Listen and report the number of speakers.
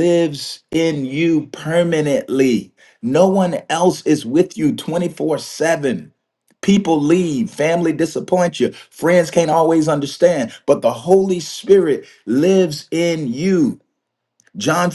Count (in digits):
1